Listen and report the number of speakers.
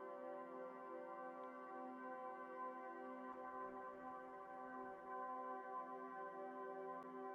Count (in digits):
0